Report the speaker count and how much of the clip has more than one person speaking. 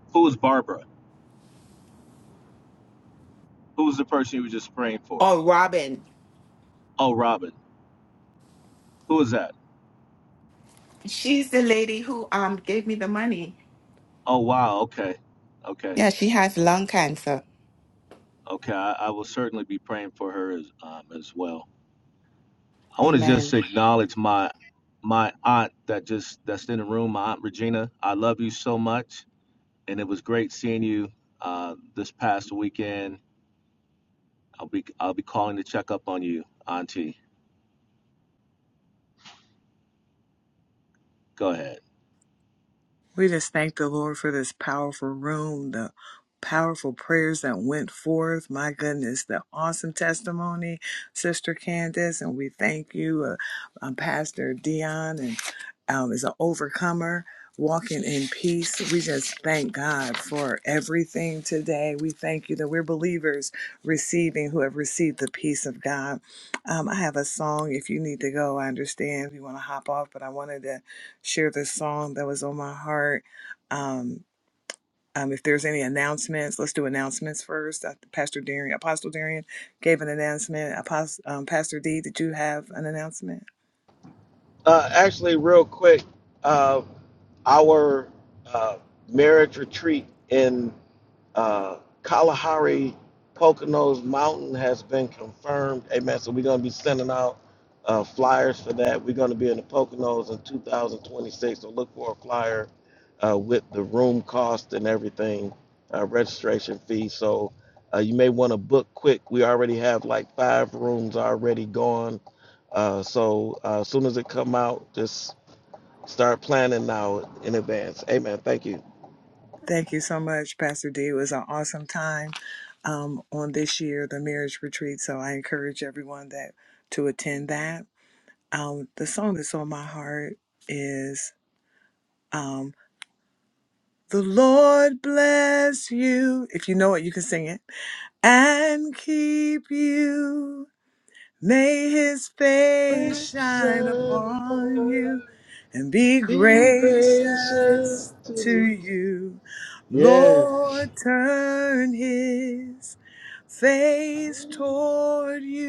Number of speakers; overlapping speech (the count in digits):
4, about 3%